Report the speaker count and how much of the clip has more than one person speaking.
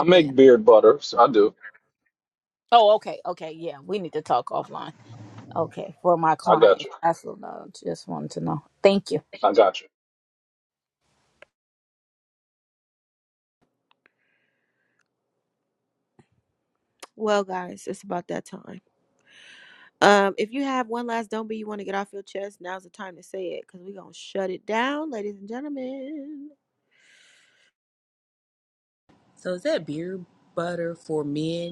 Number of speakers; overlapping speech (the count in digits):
4, about 3%